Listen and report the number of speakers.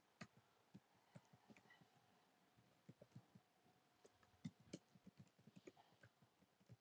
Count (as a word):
zero